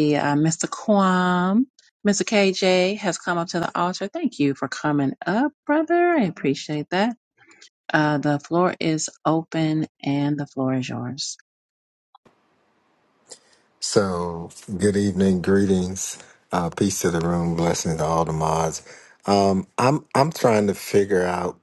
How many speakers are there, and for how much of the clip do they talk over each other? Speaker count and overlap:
2, no overlap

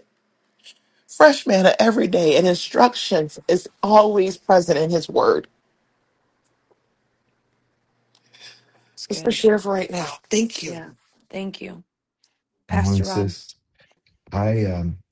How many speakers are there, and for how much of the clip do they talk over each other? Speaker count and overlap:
3, about 6%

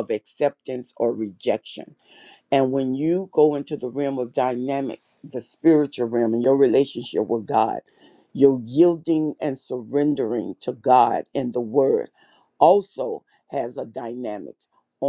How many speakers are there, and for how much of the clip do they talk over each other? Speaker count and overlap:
1, no overlap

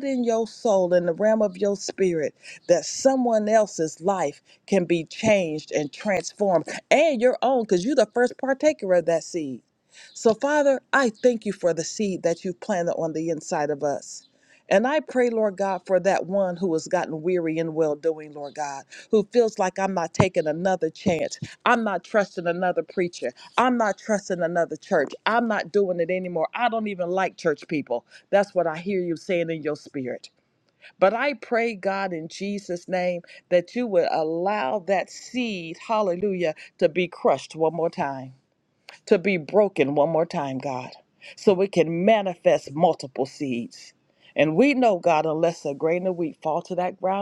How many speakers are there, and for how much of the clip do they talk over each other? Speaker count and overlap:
1, no overlap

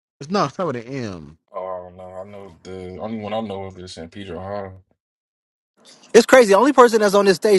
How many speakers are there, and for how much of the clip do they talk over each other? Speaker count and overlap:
3, no overlap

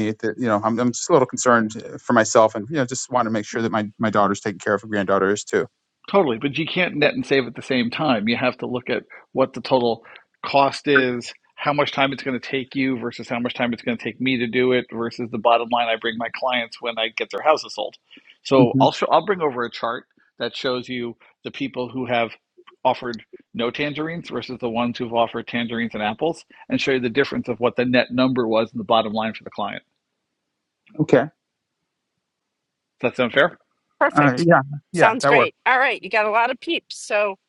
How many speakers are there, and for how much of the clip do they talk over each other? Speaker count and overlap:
3, about 3%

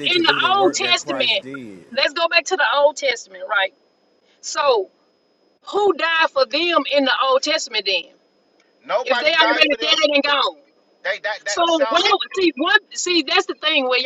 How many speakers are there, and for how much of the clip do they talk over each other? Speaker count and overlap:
3, about 21%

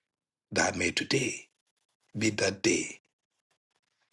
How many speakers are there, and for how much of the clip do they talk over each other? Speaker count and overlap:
1, no overlap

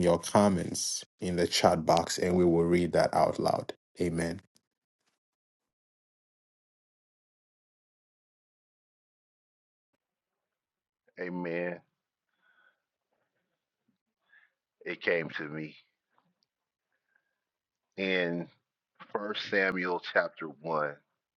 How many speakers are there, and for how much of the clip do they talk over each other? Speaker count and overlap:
2, no overlap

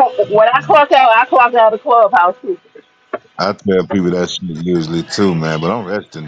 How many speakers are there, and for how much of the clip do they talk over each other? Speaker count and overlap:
2, no overlap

